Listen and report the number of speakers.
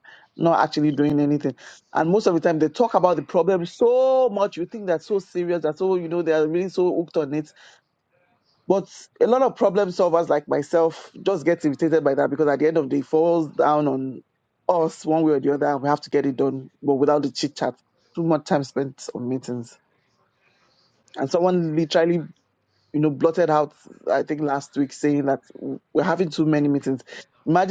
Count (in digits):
1